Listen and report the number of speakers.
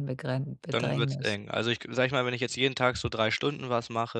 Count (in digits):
2